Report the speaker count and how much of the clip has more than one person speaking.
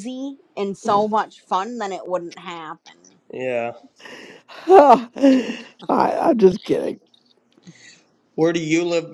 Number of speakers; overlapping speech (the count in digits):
3, no overlap